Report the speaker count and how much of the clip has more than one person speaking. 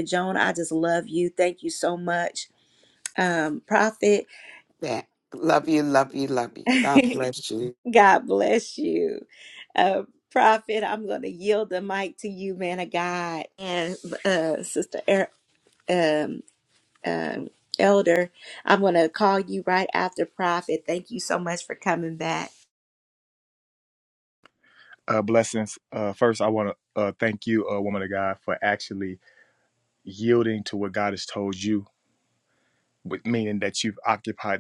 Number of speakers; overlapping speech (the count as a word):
three, no overlap